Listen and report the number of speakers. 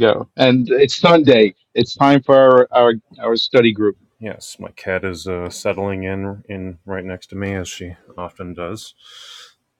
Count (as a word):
two